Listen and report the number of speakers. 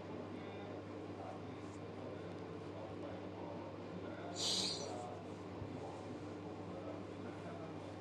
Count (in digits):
0